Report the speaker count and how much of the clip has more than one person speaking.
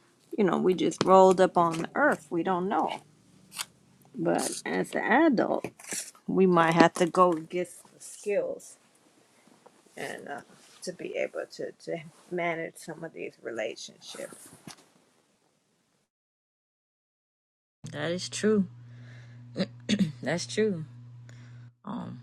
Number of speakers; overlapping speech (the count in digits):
2, no overlap